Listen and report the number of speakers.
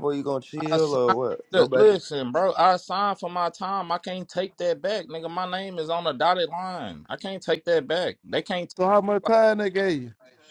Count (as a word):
three